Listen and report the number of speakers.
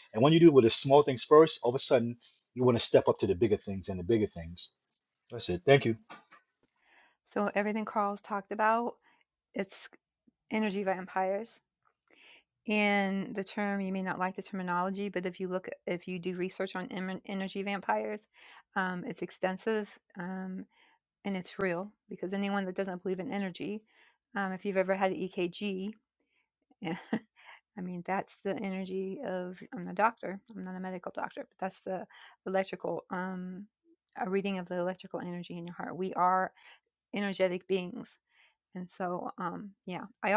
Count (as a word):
two